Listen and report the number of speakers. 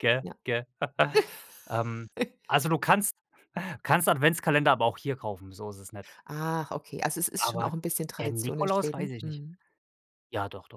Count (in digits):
2